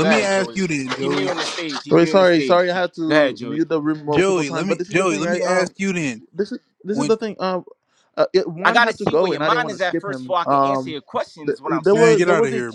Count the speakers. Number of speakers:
three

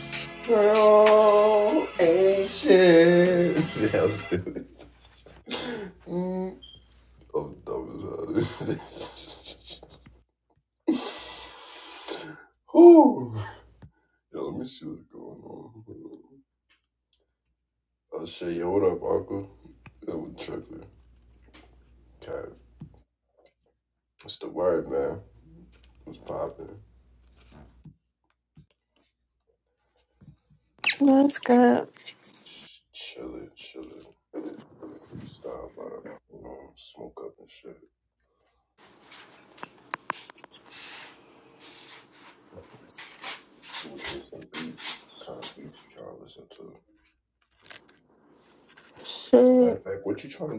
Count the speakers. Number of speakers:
two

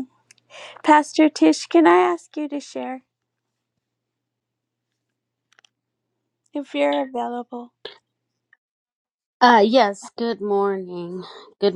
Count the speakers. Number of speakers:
two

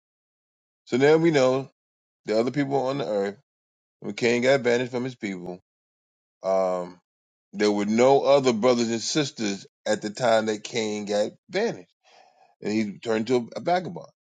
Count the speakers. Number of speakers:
one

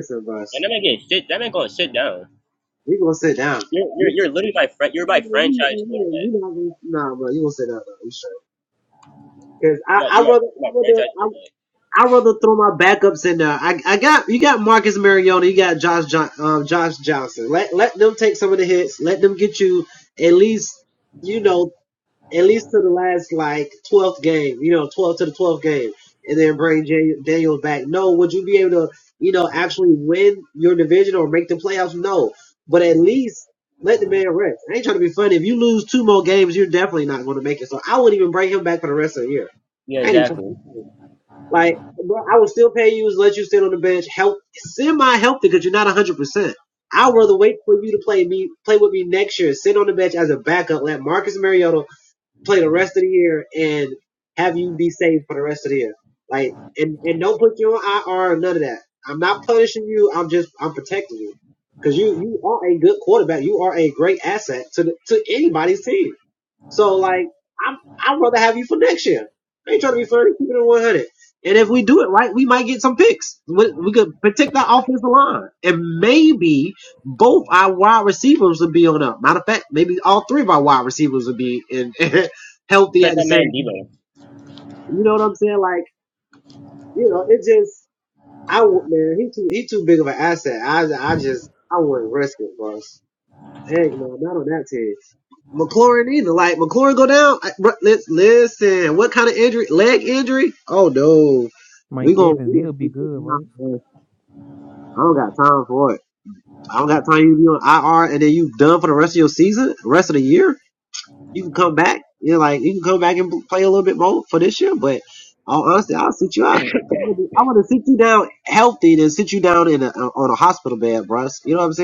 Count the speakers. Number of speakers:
three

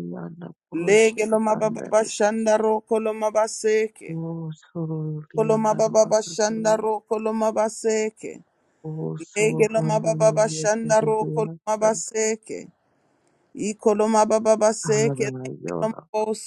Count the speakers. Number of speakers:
two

